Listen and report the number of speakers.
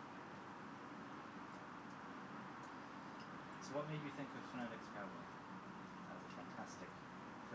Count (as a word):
one